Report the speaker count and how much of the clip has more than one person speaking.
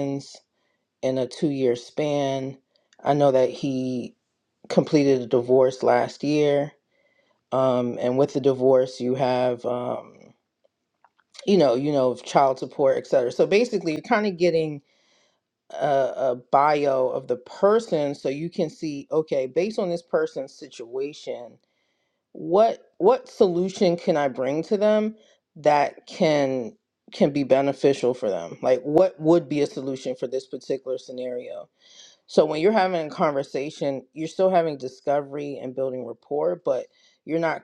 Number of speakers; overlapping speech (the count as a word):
one, no overlap